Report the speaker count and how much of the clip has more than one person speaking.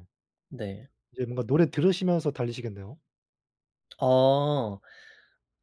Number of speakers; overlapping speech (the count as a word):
two, no overlap